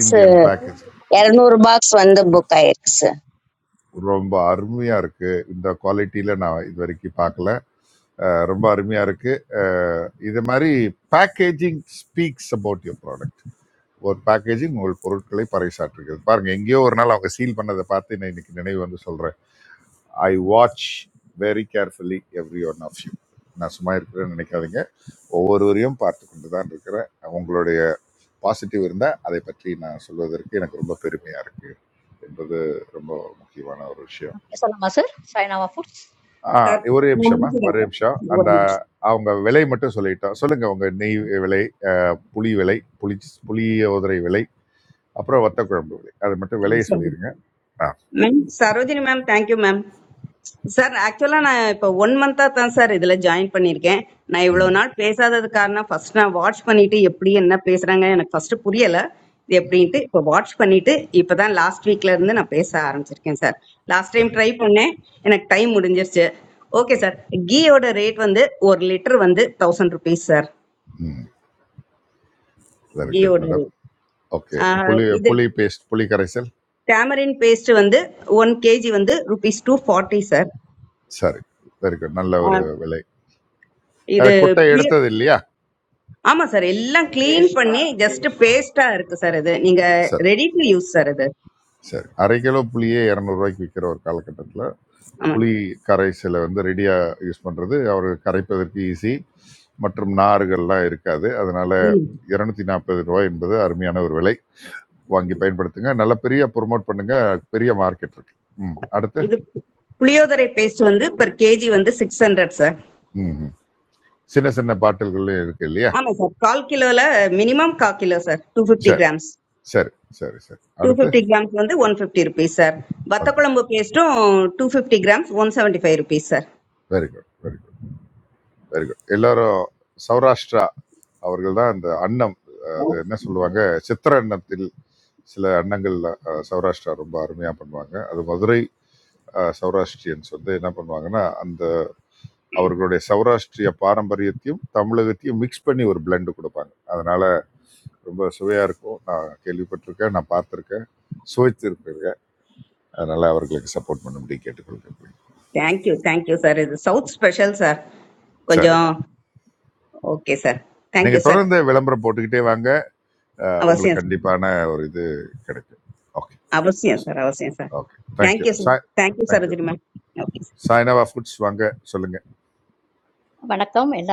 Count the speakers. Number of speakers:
four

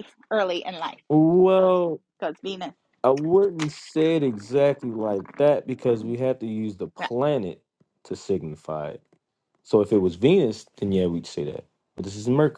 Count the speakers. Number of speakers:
two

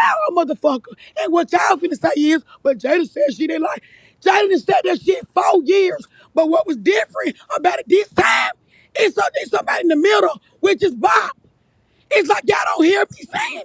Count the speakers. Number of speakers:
one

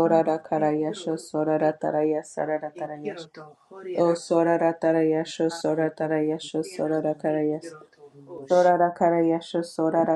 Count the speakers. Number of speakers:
two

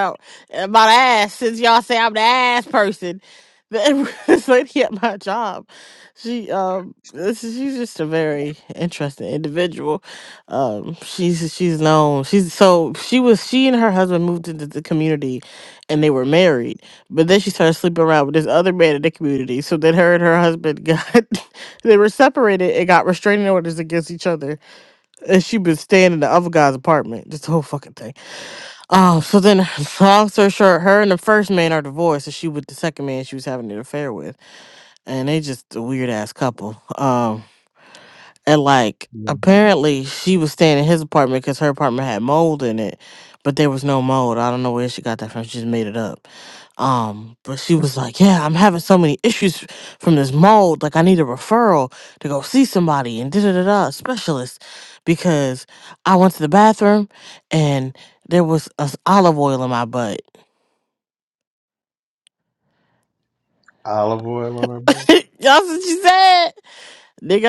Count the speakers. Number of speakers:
two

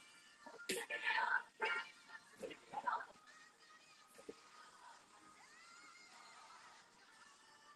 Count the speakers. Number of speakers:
zero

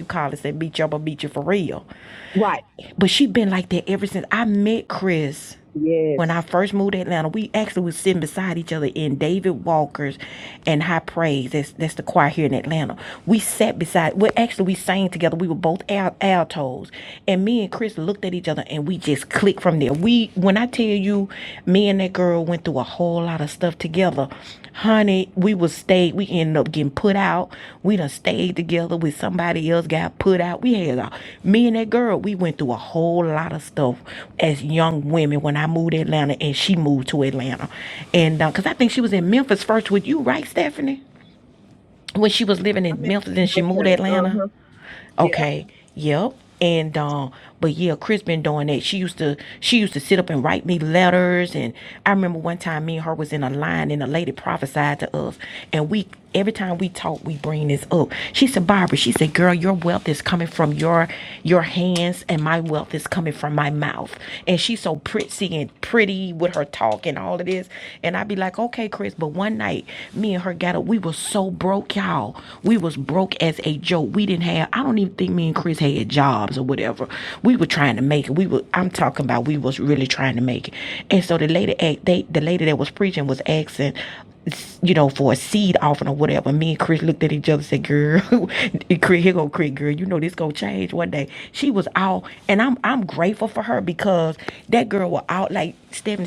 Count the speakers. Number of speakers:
two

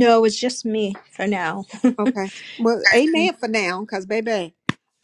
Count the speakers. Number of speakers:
two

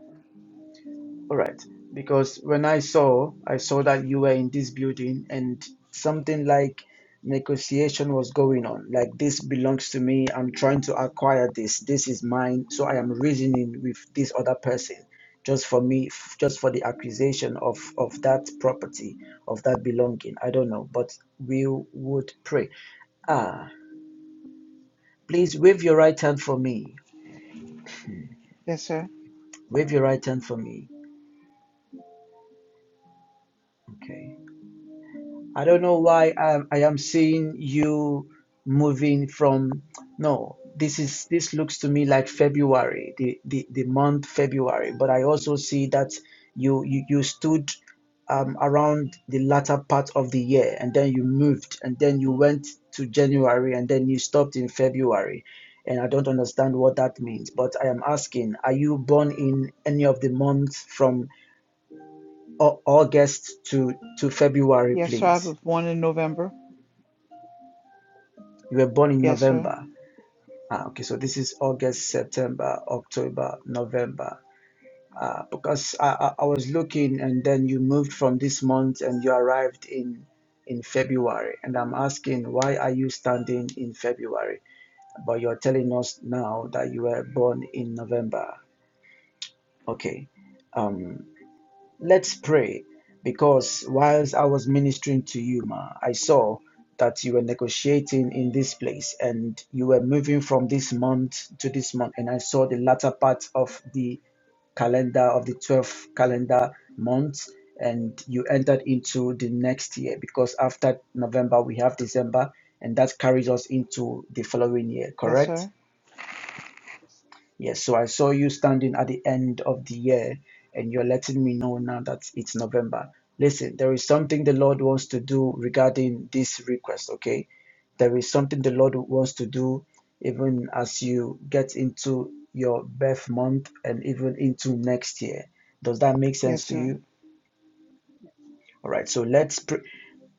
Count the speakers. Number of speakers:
two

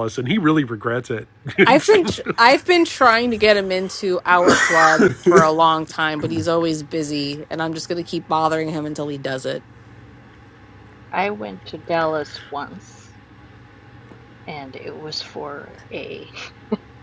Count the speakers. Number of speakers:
three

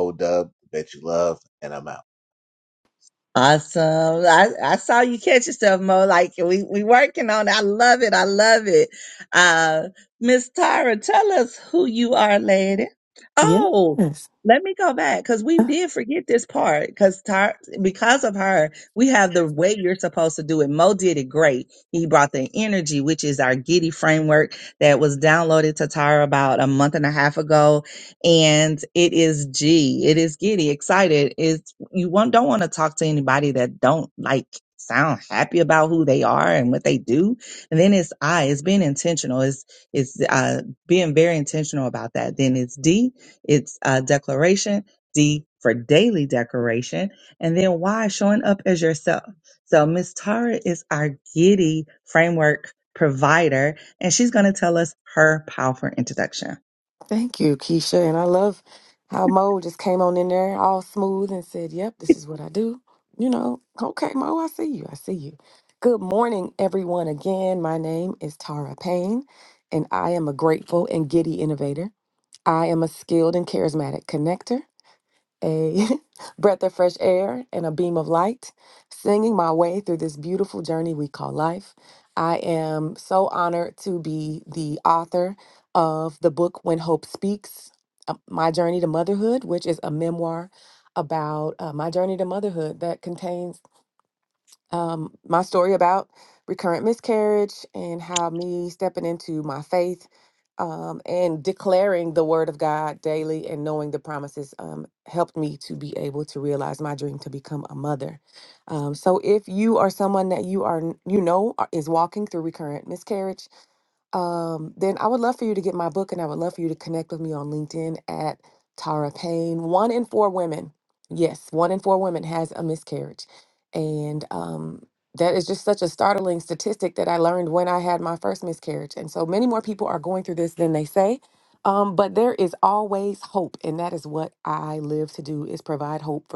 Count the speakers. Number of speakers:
three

